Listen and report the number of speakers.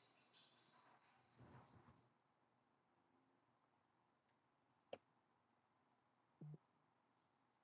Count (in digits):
0